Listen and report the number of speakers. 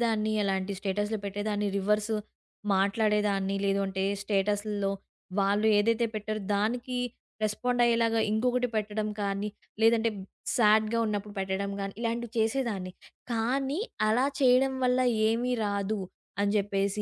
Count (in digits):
1